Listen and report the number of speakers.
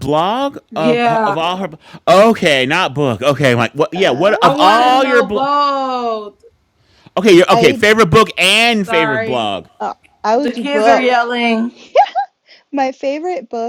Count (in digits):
3